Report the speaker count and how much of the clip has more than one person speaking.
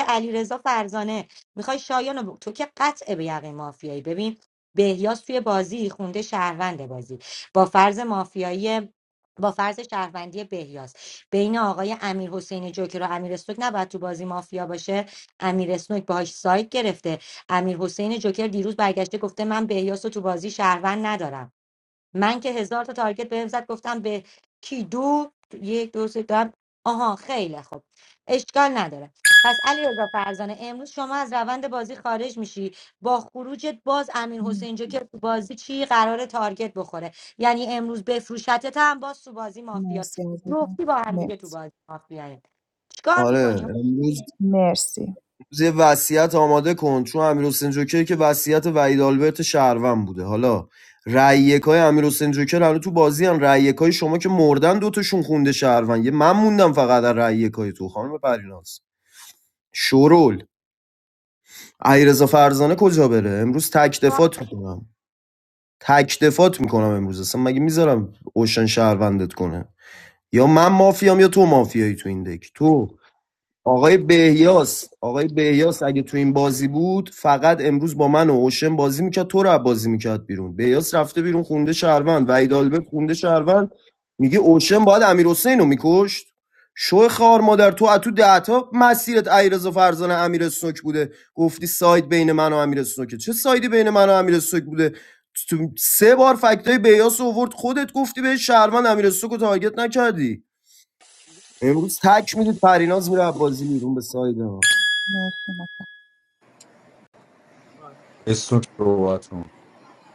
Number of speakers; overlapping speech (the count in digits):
4, about 1%